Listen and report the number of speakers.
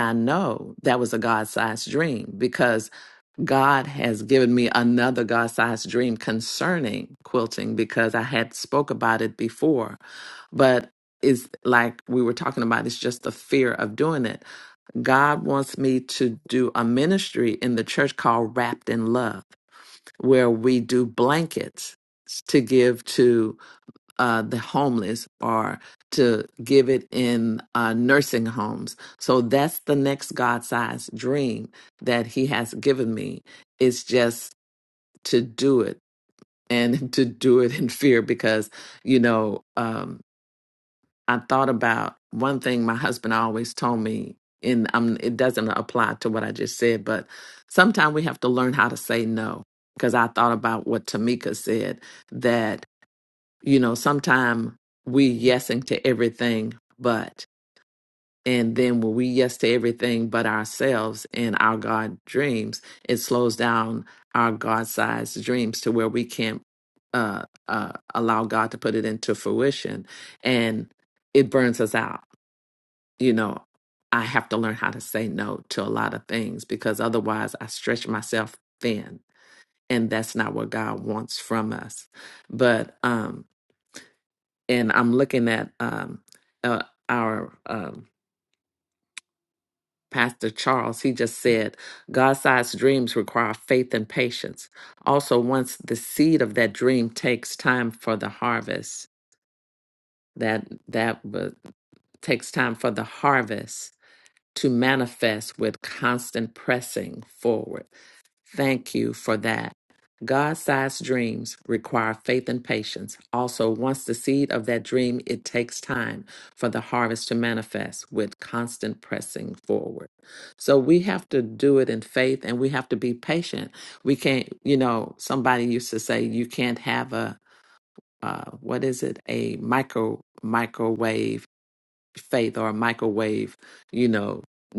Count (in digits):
1